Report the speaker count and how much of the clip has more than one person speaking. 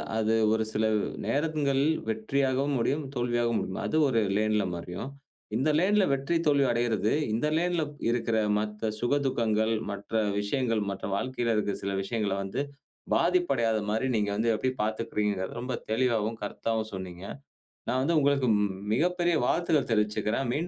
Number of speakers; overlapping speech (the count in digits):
1, no overlap